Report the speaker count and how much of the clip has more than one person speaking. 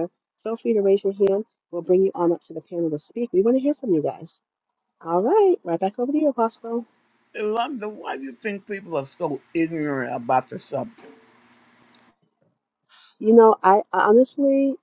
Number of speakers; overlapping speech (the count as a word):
two, no overlap